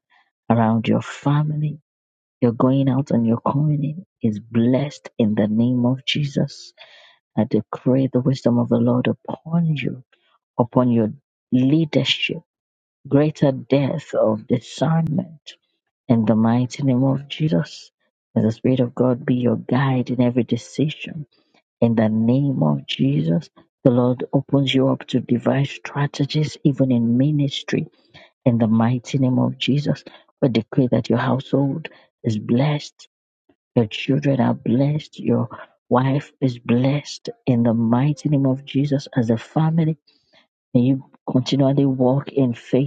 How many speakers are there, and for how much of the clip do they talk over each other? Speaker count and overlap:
one, no overlap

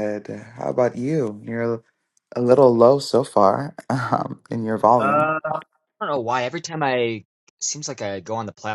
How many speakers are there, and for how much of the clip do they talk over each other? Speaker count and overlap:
two, about 4%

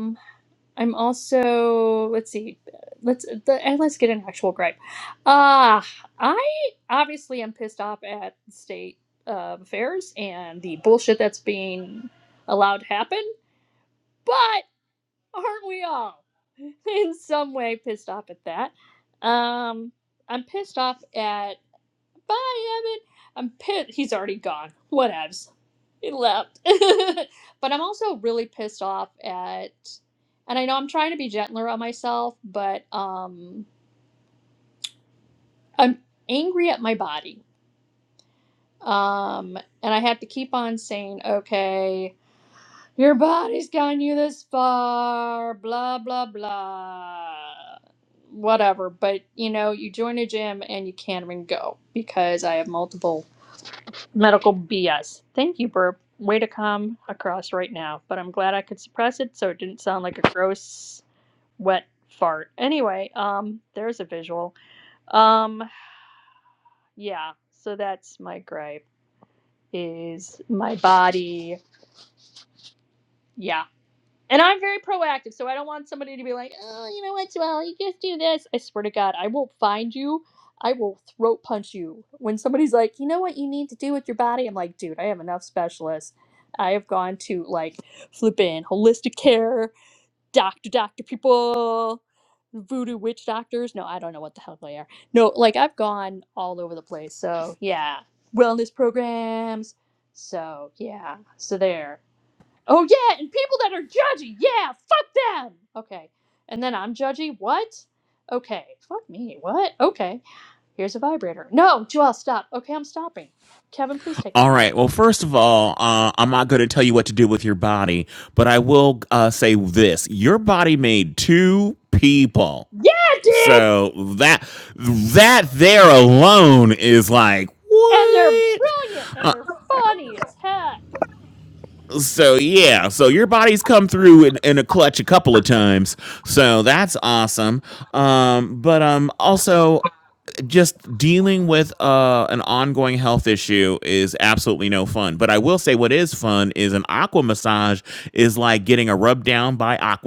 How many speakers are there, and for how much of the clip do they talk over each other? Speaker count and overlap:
two, about 1%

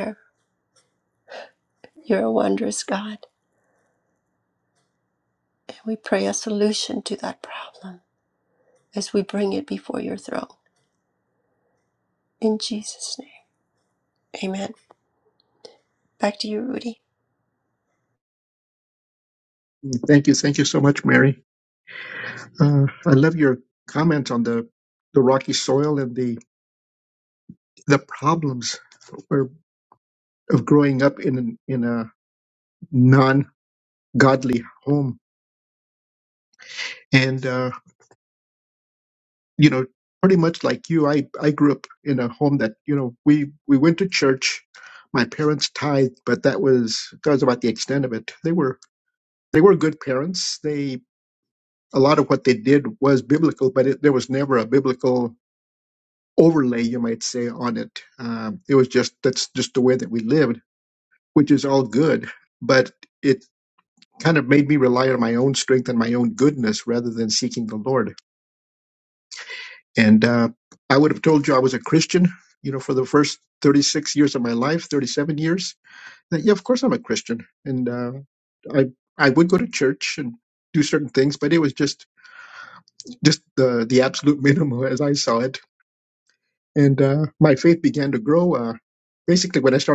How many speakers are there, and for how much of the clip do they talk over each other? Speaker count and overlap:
two, no overlap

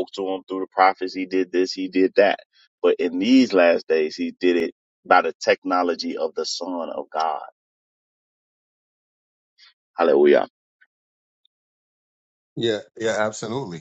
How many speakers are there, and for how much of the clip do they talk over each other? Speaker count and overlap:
two, no overlap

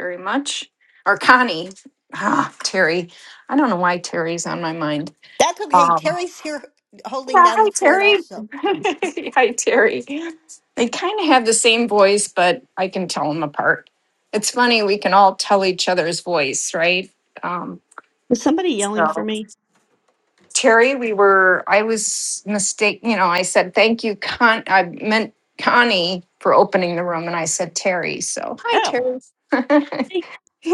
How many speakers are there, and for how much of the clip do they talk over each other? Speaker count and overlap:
three, about 6%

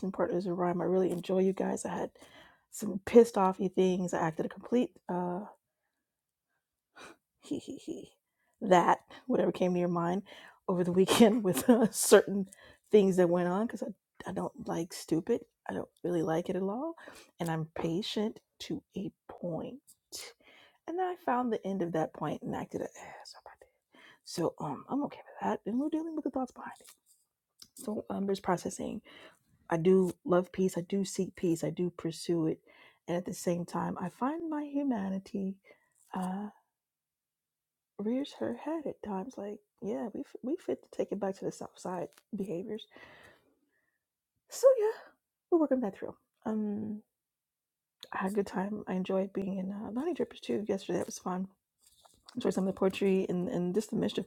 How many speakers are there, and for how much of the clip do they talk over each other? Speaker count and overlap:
one, no overlap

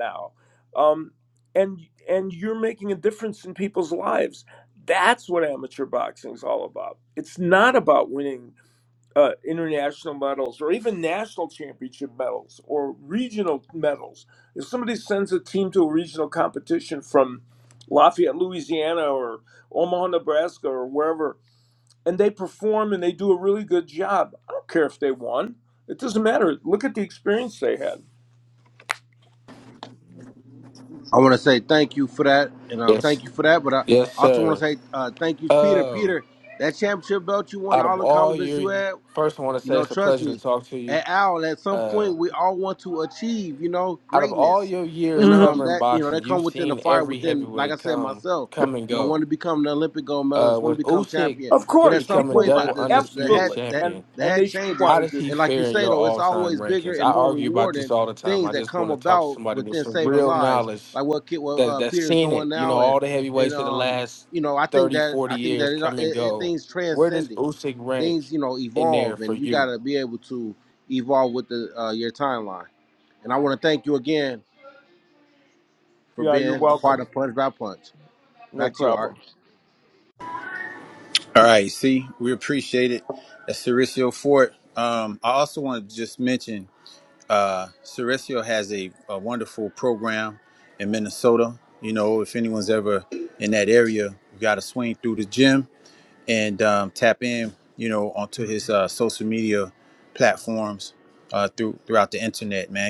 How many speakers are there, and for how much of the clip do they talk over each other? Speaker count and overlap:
four, about 23%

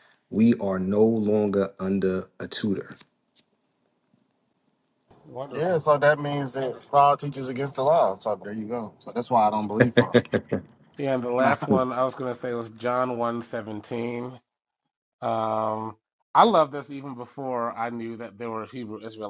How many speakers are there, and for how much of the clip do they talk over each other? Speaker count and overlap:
three, about 4%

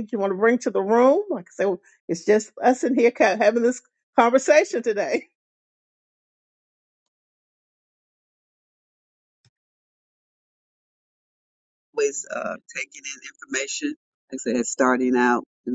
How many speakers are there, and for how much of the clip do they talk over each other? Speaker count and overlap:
two, no overlap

